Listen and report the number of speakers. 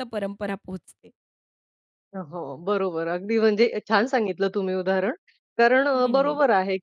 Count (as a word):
two